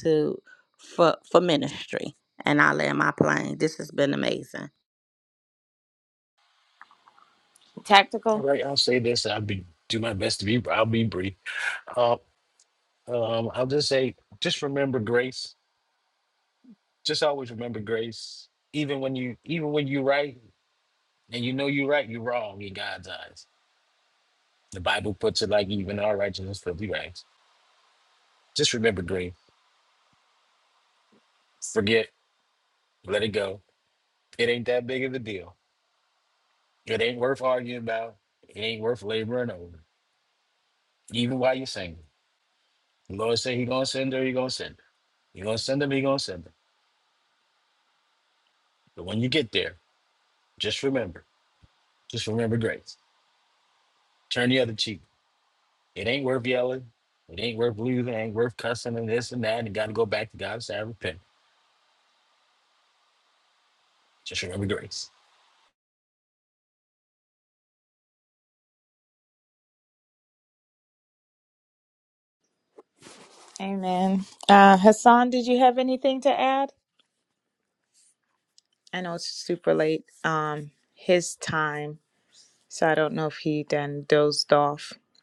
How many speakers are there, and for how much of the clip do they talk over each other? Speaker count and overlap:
3, under 1%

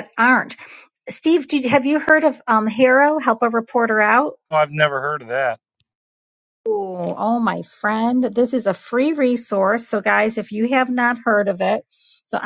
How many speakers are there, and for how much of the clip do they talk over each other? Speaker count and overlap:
2, no overlap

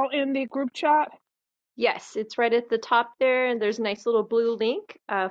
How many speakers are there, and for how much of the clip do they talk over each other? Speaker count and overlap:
2, no overlap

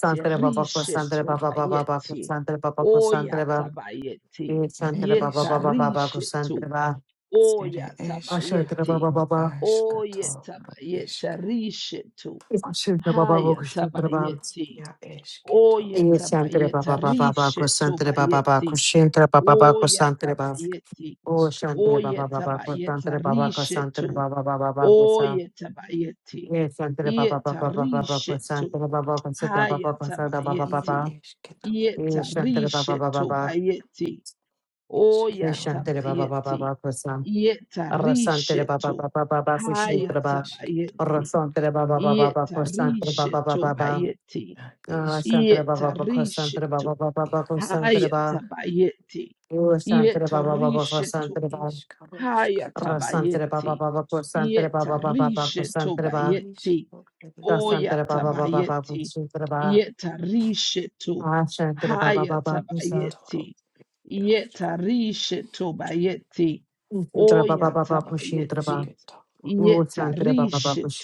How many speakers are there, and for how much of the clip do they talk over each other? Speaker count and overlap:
2, about 36%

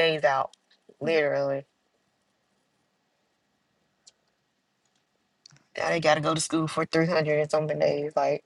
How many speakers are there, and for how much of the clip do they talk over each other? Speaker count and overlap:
1, no overlap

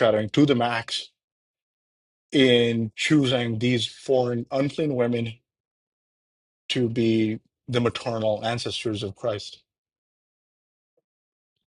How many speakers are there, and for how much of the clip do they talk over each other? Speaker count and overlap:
1, no overlap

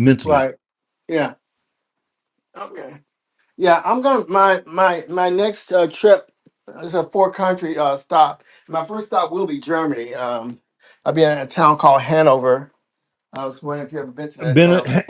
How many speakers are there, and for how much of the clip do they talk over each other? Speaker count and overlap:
2, about 5%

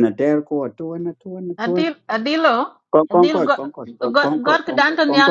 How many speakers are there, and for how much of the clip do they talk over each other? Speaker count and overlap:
2, about 29%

